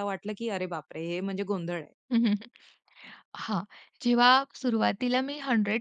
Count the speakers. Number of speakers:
two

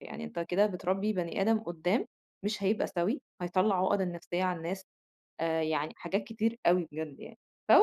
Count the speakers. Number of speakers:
one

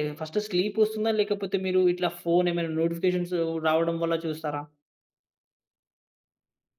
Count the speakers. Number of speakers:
one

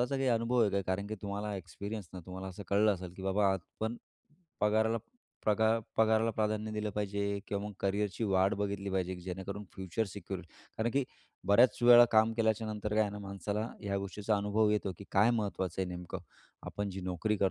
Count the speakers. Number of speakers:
one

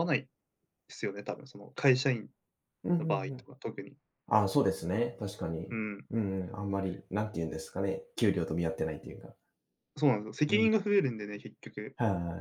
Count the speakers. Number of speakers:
two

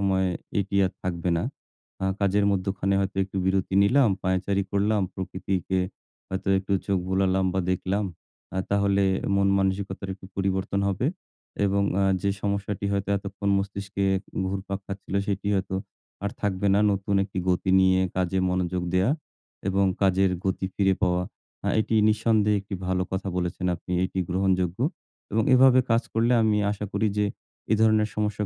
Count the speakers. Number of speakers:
one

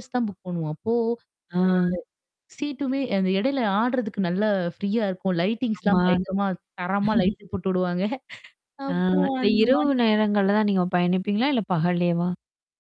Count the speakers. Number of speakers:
two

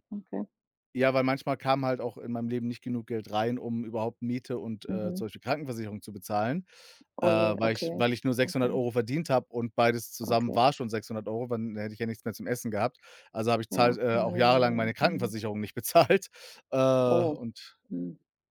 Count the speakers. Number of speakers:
two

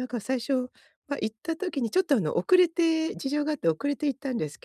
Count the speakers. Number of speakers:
one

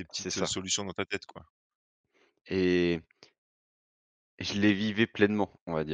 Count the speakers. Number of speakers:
two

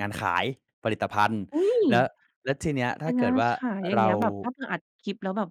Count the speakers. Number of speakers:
two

